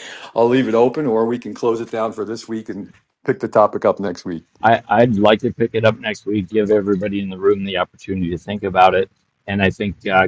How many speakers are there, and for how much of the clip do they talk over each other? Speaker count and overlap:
2, no overlap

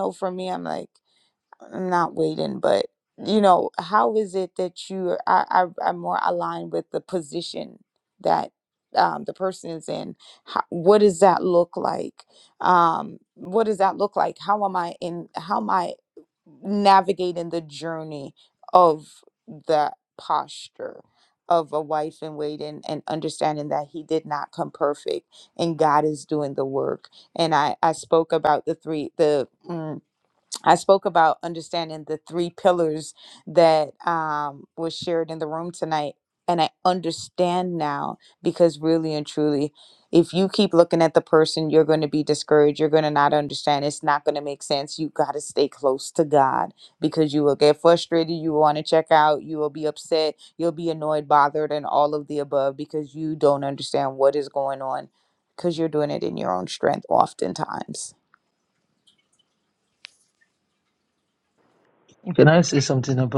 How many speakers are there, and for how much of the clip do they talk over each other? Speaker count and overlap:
2, no overlap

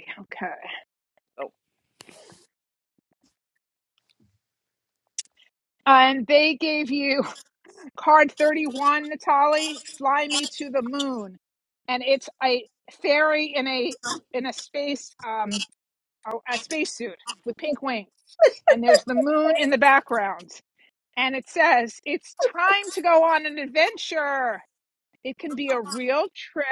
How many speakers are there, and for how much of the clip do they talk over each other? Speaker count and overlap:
1, no overlap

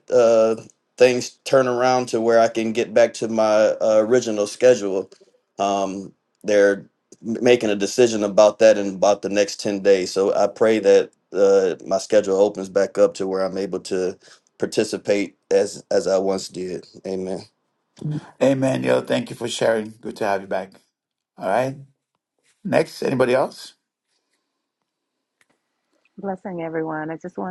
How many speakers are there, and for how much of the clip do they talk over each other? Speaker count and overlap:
3, no overlap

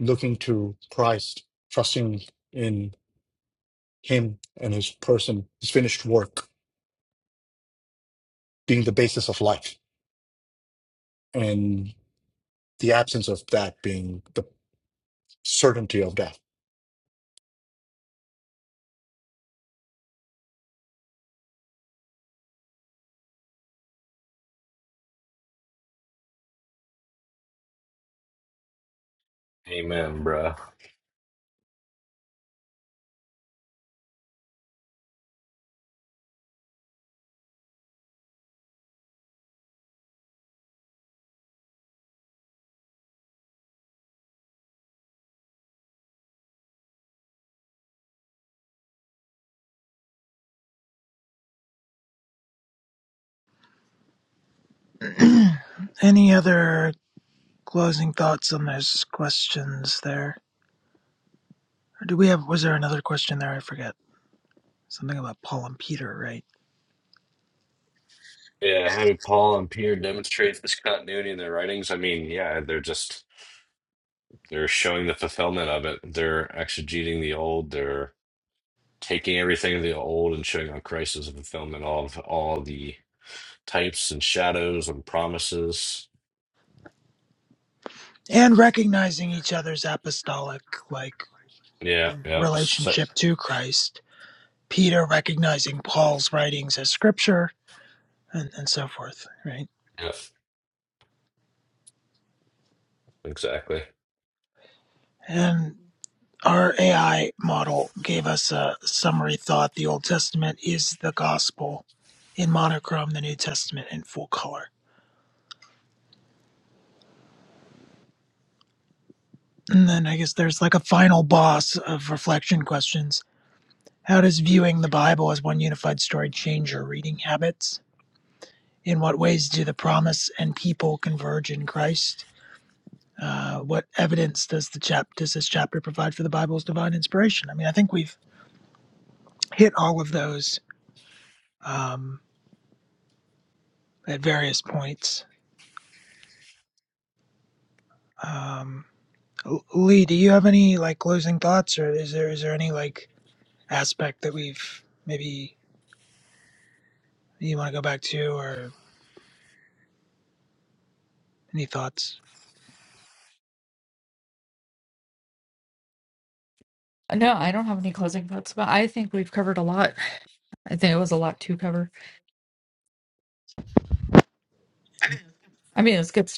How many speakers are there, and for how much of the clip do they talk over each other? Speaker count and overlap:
4, under 1%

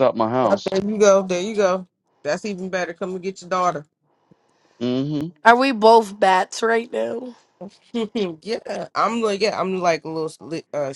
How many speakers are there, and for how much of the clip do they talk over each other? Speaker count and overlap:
3, about 1%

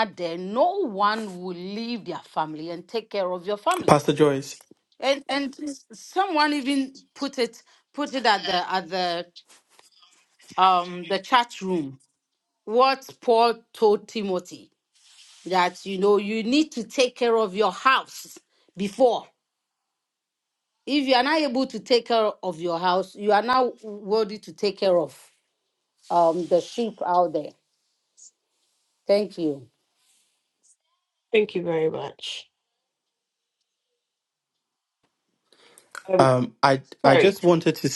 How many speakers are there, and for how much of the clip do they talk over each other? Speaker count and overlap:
3, about 1%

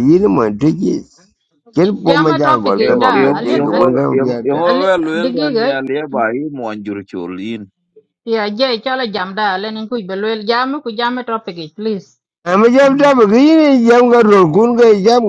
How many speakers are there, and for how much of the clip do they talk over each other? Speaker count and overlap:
3, about 25%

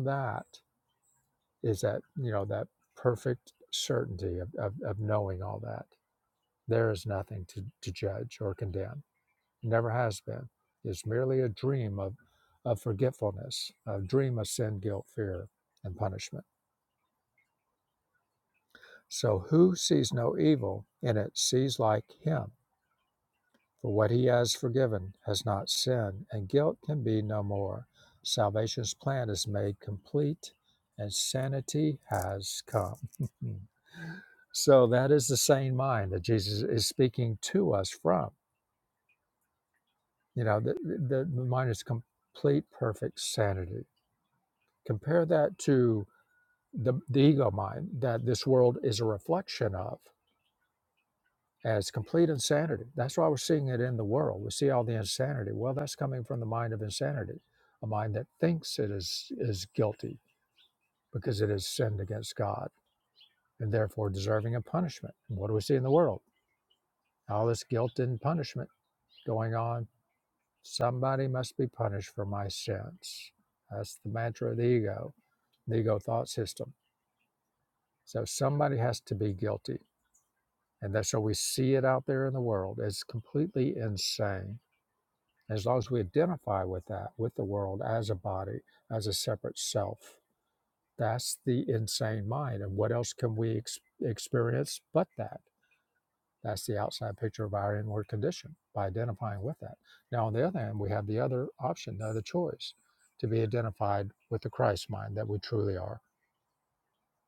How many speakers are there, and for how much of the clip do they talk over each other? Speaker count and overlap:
1, no overlap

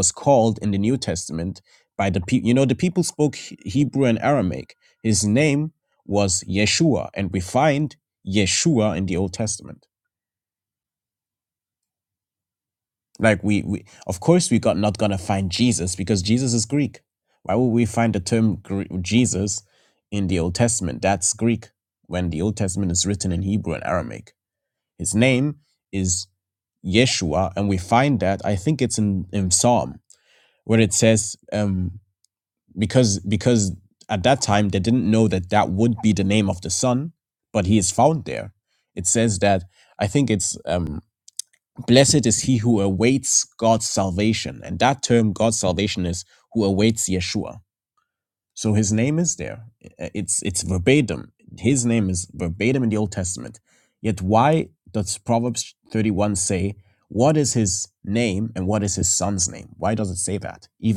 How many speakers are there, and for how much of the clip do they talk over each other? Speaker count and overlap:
1, no overlap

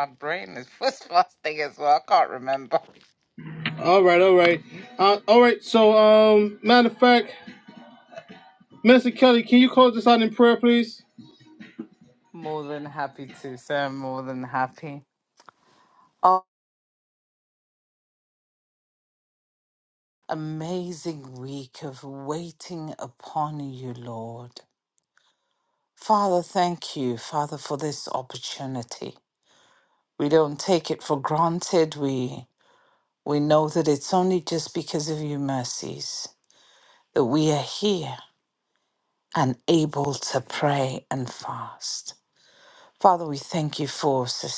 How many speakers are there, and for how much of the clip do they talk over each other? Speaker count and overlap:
2, no overlap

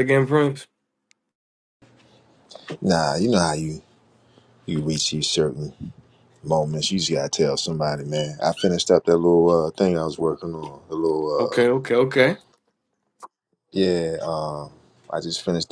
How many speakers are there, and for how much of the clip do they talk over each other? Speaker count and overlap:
2, about 2%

